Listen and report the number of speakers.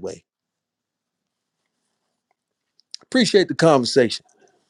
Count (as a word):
one